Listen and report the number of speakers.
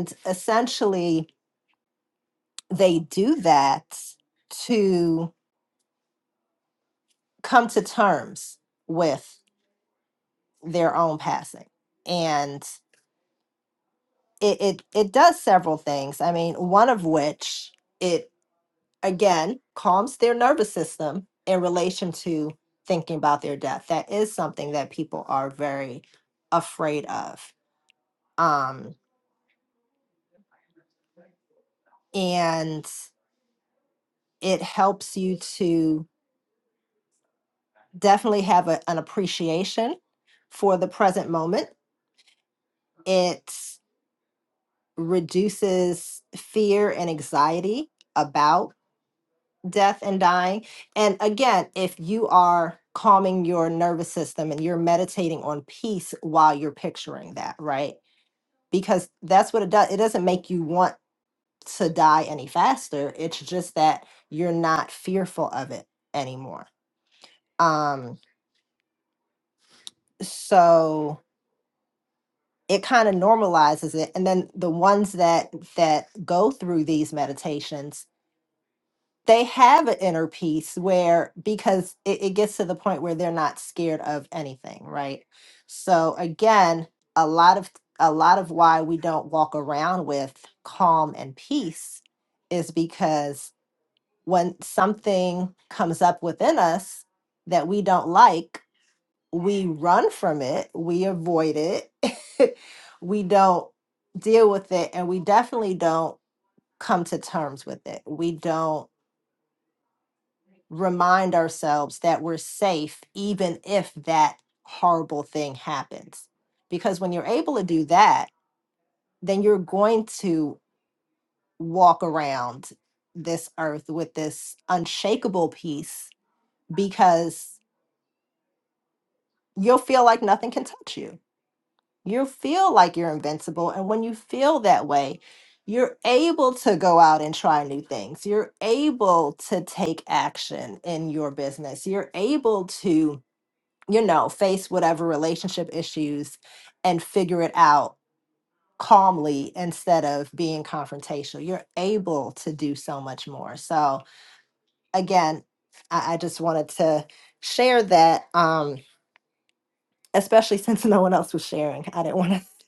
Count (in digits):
1